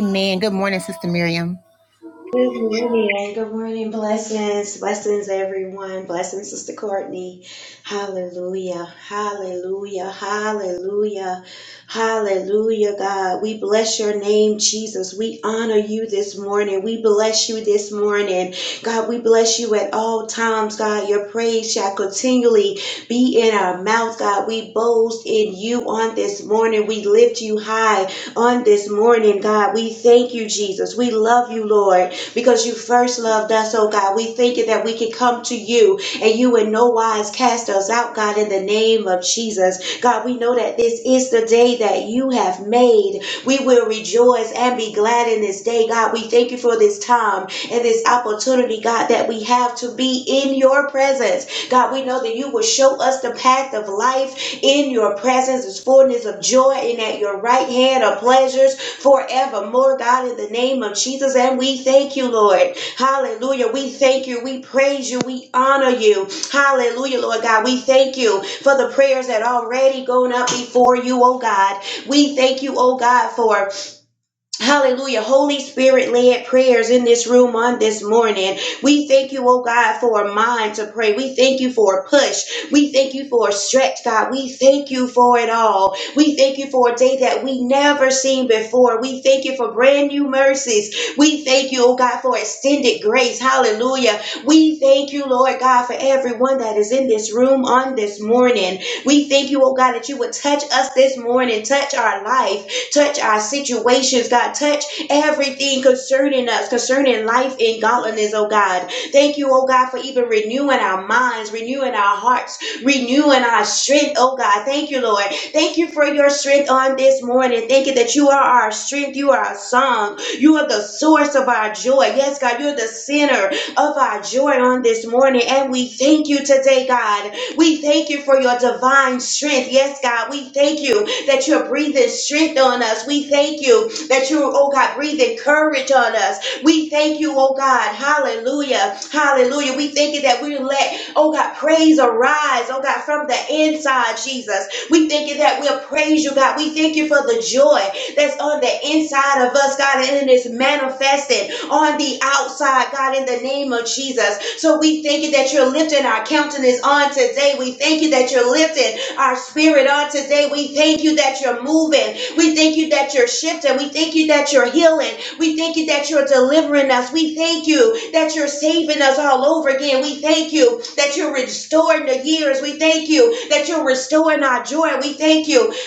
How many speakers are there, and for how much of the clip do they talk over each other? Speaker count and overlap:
2, no overlap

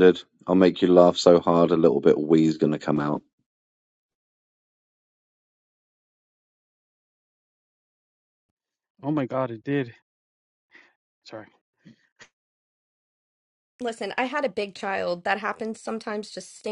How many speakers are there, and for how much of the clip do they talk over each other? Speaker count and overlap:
3, no overlap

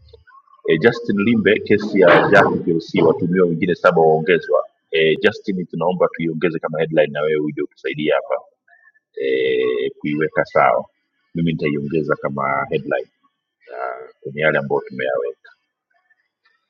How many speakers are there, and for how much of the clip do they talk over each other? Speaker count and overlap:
1, no overlap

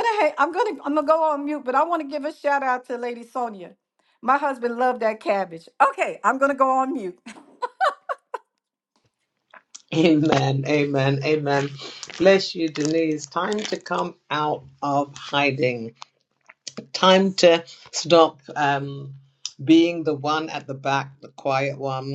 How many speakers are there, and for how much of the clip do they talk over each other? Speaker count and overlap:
2, no overlap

